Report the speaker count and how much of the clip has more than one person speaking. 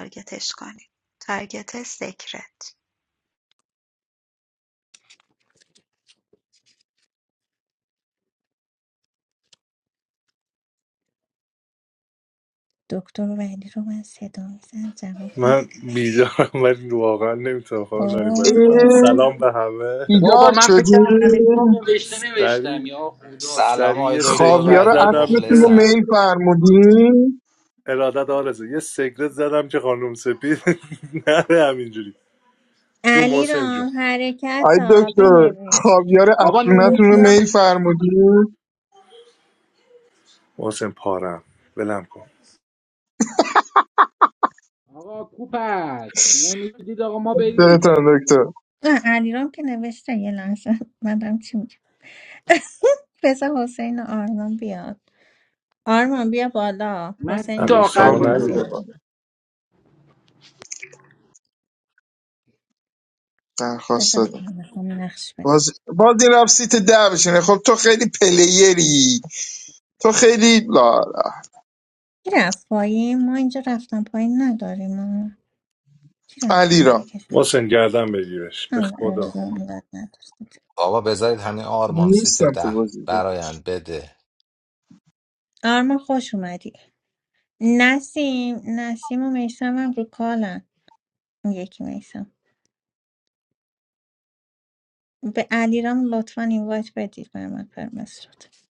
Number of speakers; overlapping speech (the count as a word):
six, about 13%